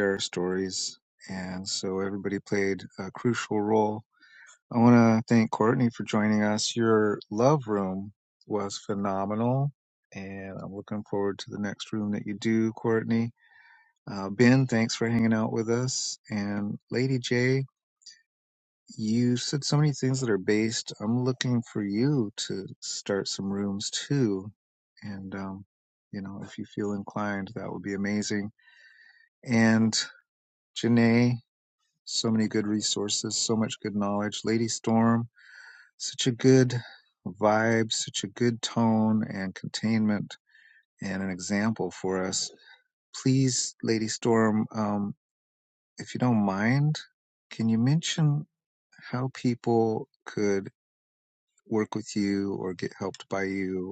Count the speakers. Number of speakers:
1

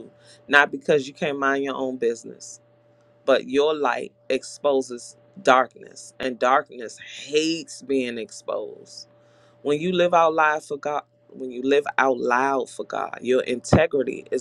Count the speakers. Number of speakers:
1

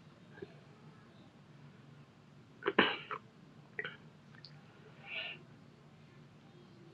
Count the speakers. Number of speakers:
0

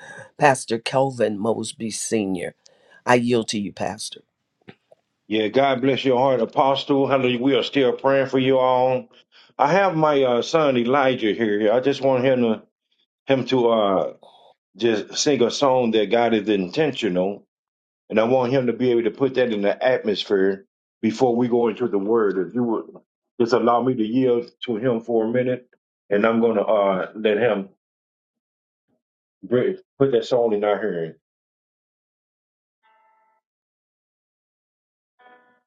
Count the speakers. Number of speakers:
2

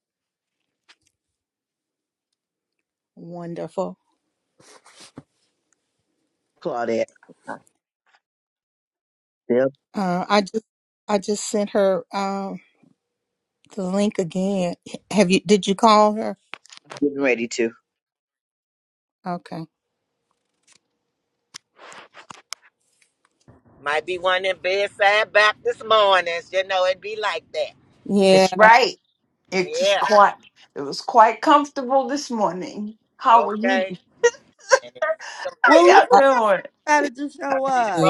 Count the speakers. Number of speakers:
5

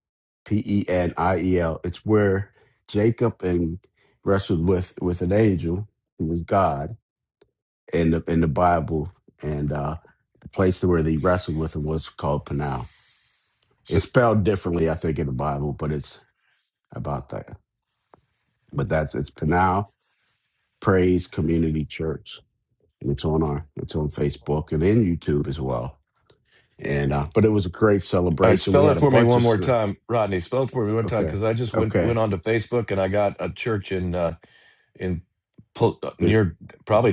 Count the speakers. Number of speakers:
2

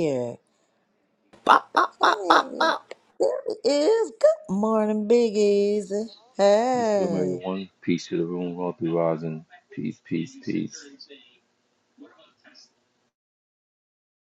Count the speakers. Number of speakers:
3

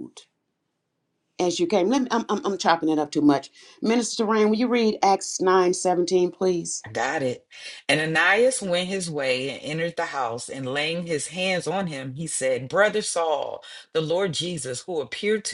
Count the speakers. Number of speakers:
2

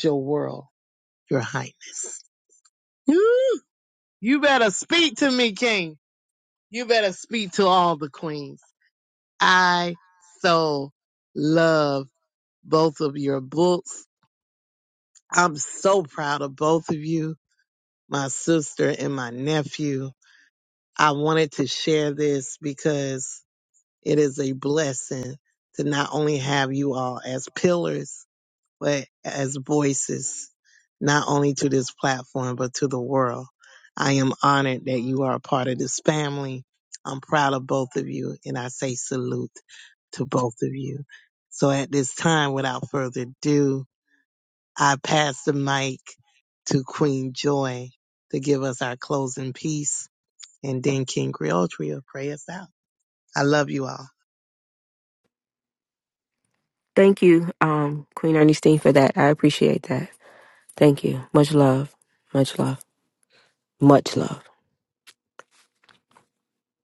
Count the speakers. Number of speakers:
2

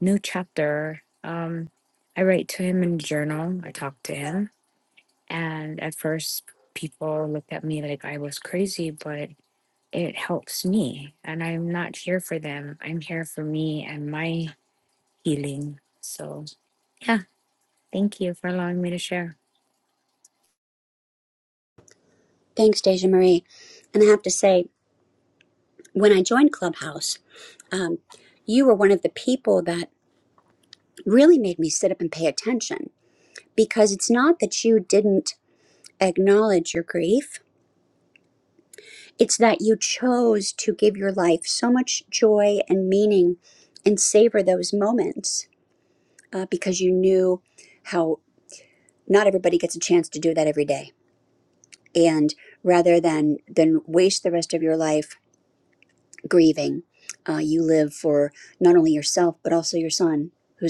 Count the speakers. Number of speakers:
2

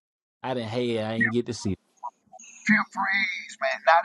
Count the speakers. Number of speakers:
2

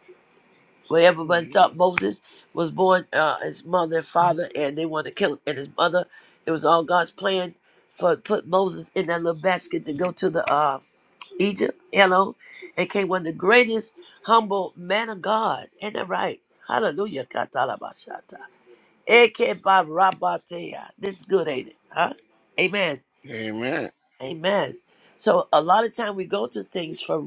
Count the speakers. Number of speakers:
2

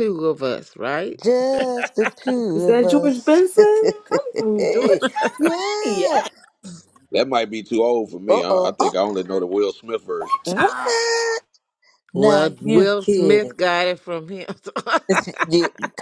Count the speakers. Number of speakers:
4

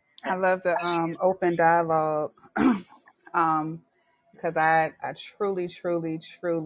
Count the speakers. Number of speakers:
1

